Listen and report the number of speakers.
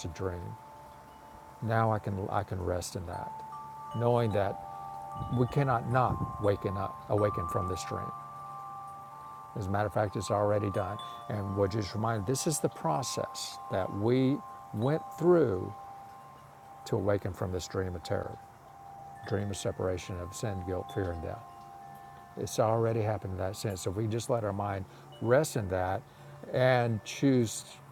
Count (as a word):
one